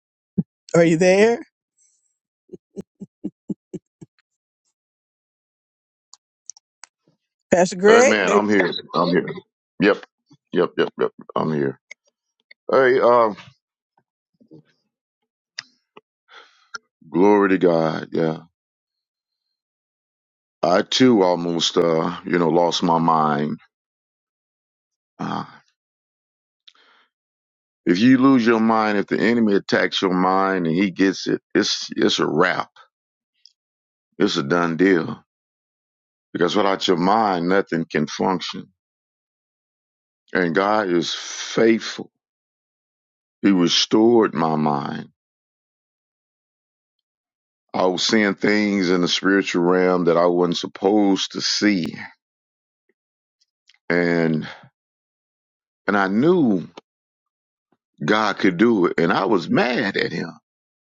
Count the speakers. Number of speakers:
2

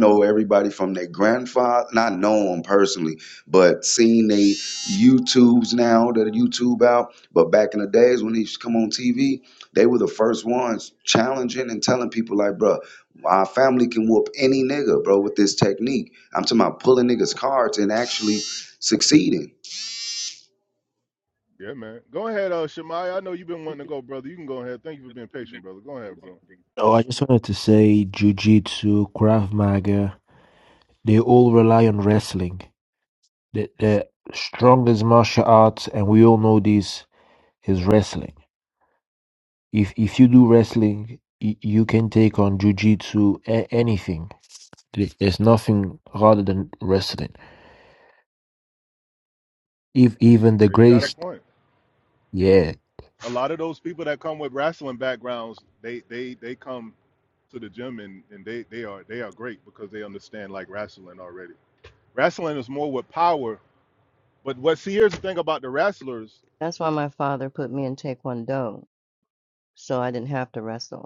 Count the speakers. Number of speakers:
4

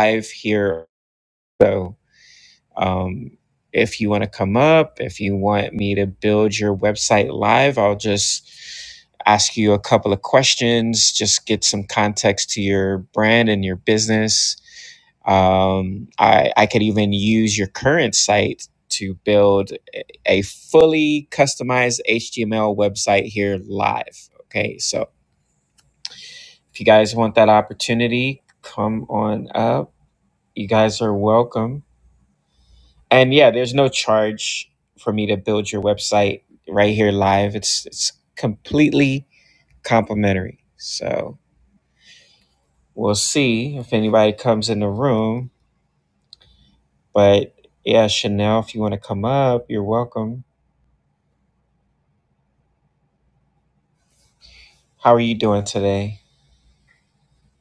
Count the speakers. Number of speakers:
1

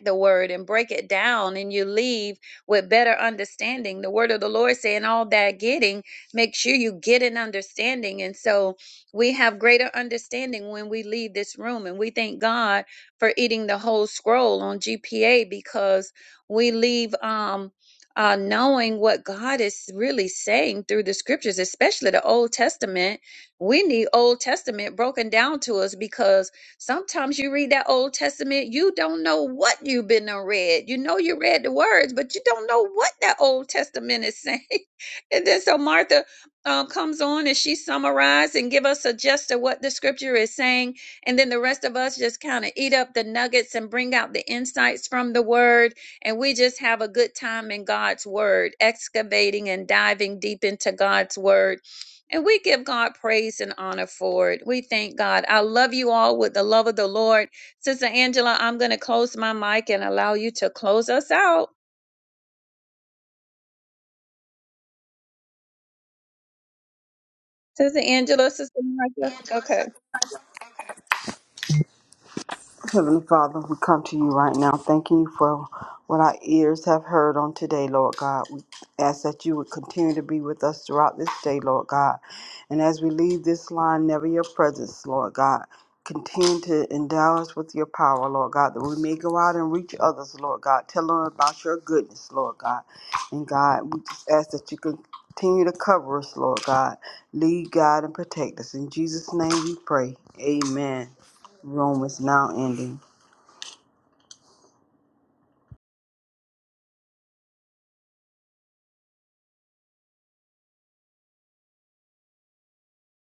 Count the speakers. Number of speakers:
2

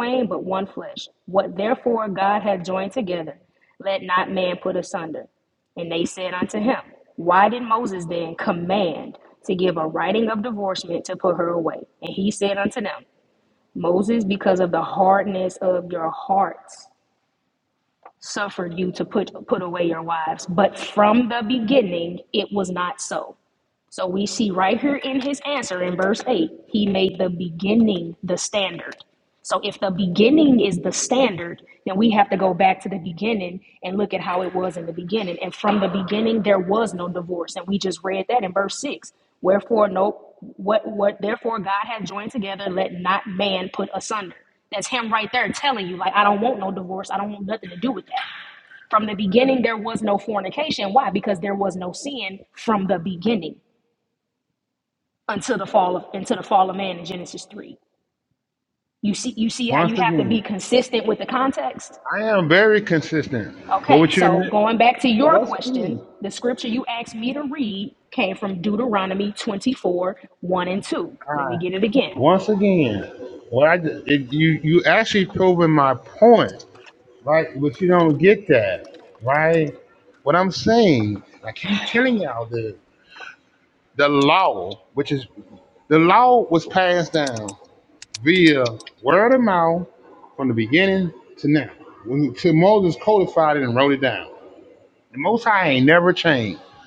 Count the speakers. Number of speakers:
2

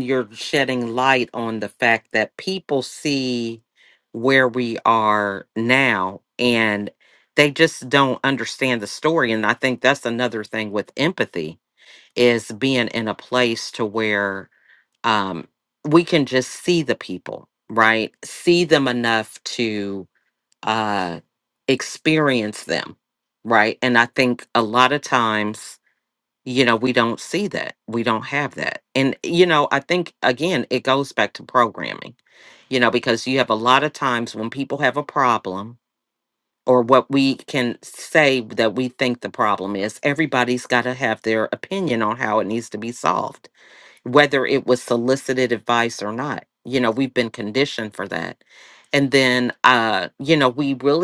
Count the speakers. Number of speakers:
1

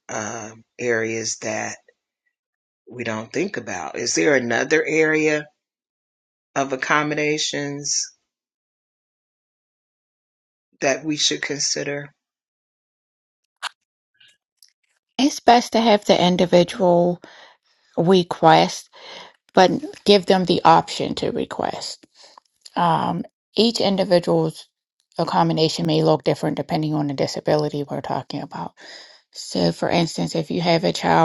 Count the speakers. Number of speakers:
2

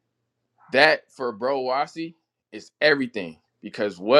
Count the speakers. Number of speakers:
1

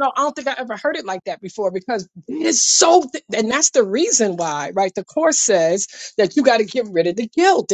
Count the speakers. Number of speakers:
1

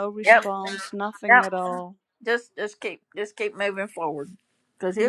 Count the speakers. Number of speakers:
2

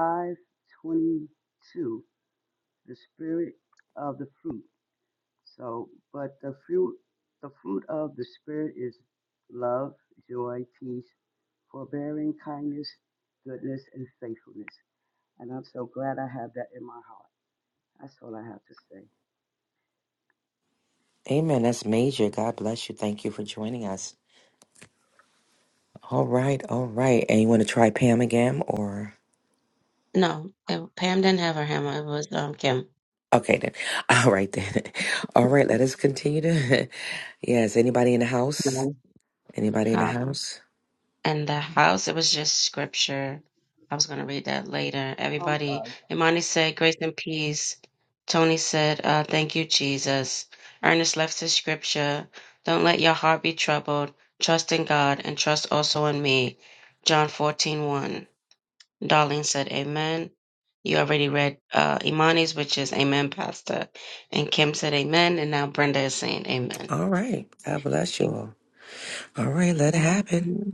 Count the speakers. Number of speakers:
3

